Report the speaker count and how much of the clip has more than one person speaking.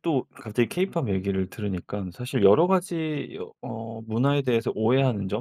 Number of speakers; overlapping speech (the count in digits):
1, no overlap